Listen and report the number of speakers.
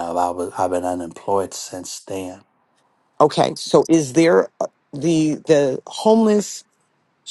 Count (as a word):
two